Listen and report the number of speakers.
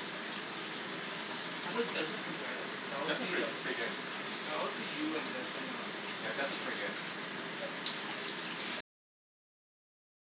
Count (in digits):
2